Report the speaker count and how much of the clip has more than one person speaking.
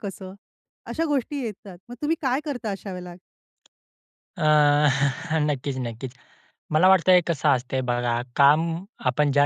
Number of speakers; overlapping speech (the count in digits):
2, no overlap